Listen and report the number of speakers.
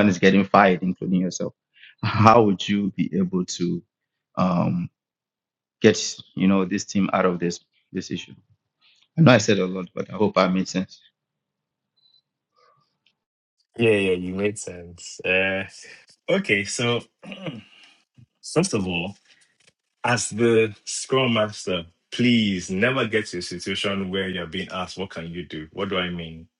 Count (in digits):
2